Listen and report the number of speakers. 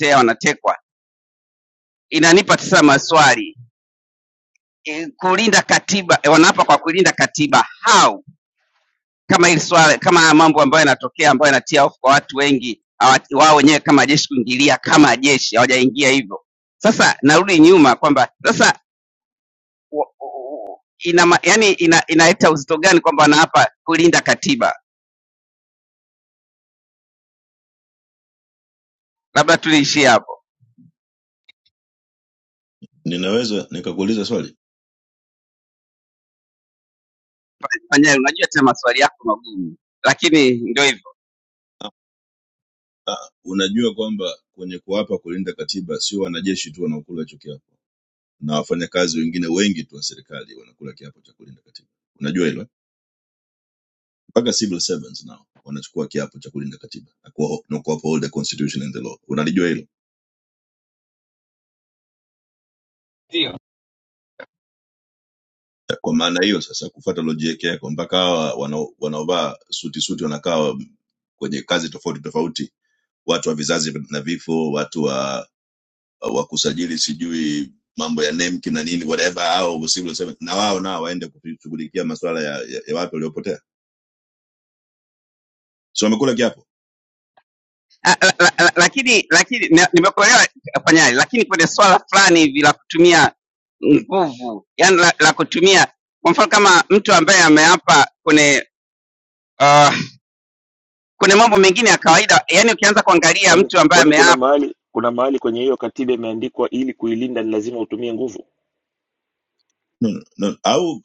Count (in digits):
3